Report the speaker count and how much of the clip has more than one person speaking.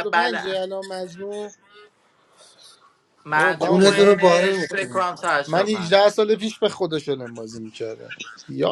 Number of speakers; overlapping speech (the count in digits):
3, about 28%